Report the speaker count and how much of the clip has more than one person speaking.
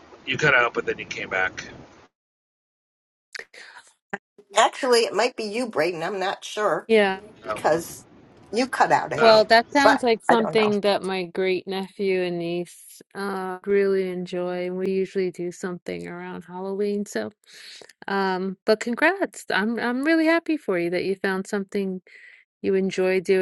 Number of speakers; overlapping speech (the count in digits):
3, about 6%